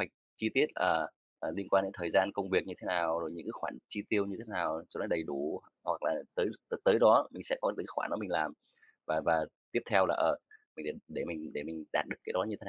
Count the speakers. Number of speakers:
1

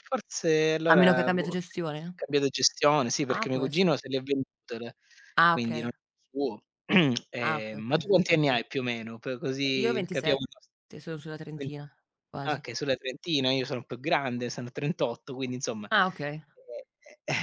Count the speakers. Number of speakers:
2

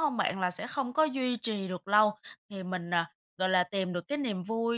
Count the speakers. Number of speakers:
1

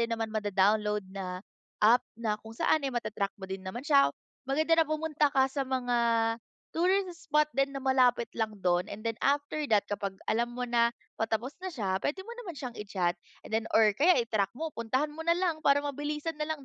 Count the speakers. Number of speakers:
1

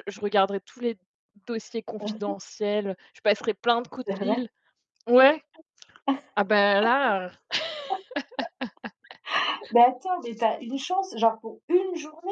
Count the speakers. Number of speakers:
2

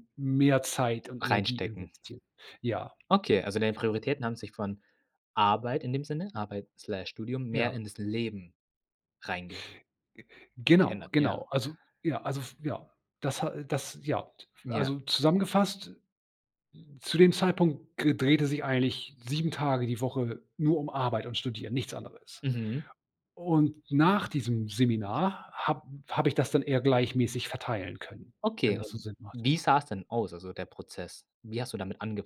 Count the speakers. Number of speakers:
2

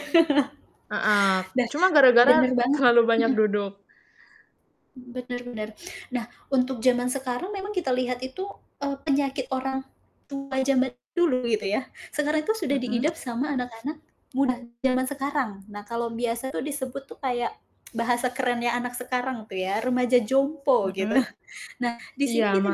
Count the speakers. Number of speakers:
2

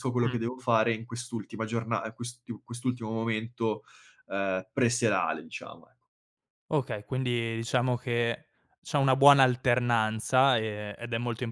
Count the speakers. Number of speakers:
2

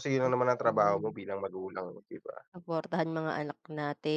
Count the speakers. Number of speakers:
2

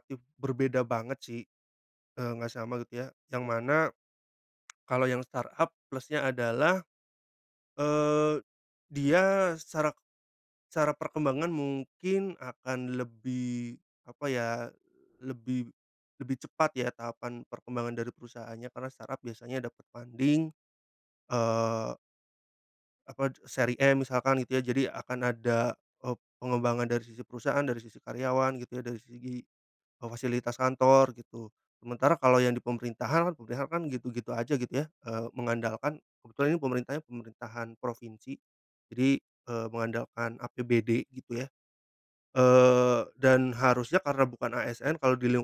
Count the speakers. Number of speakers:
1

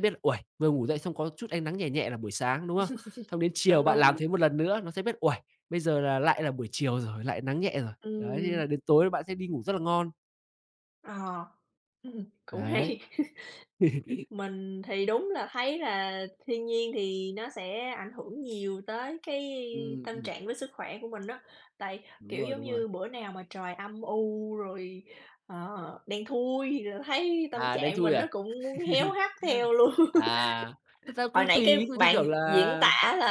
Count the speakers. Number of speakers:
2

